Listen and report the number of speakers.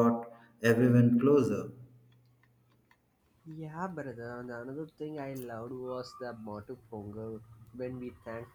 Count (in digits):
2